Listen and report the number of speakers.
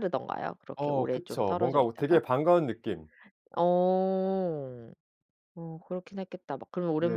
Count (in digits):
2